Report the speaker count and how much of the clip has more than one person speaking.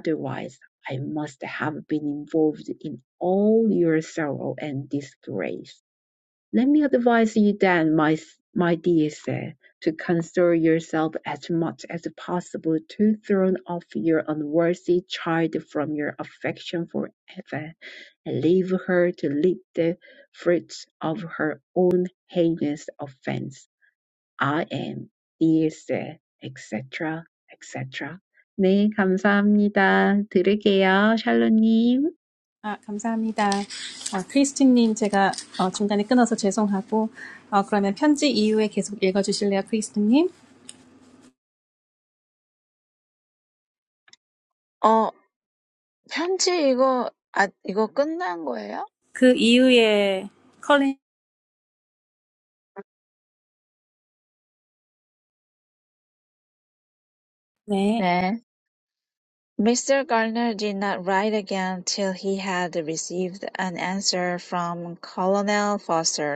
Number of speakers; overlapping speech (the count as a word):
three, under 1%